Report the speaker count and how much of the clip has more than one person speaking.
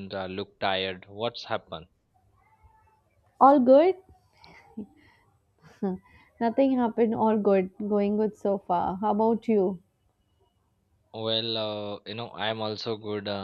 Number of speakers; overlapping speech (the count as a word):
two, no overlap